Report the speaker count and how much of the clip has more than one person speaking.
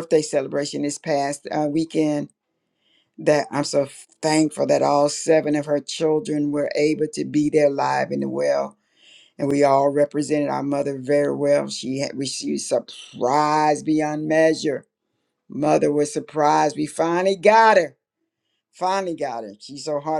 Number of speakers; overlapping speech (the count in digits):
1, no overlap